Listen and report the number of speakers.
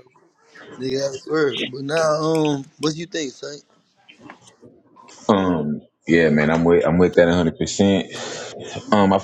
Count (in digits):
2